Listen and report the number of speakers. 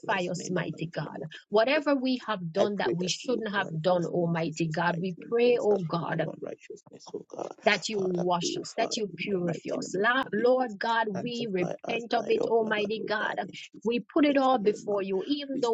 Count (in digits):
2